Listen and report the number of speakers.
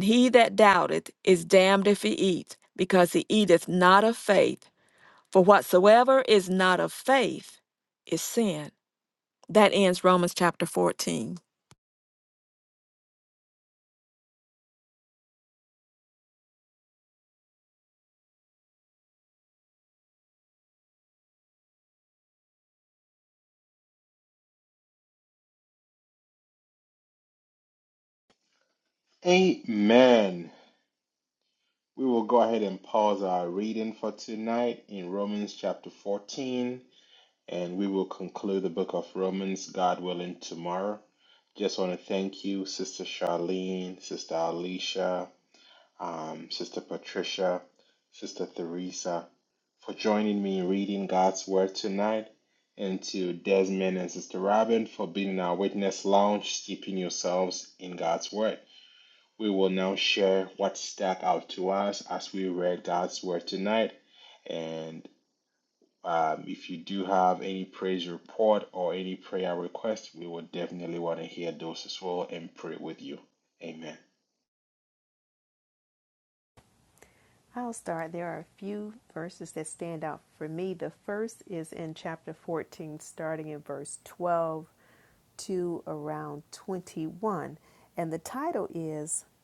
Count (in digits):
3